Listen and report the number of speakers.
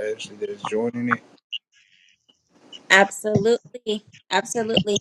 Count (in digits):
2